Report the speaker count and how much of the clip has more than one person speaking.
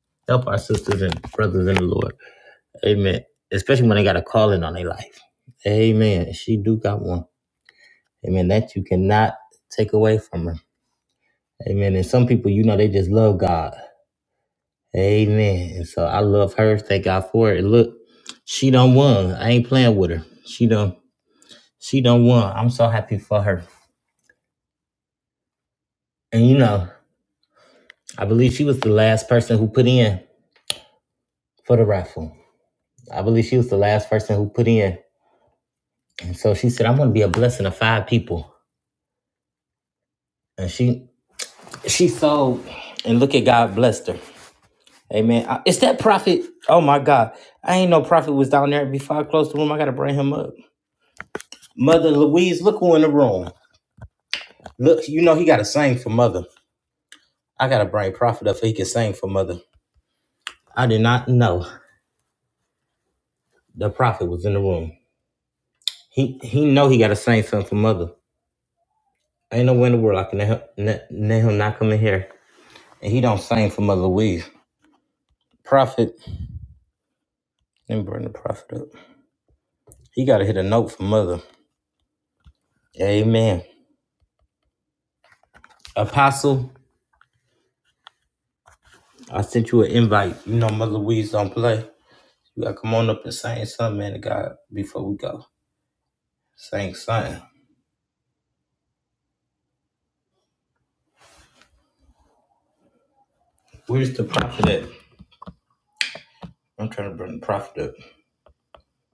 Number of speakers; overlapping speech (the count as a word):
one, no overlap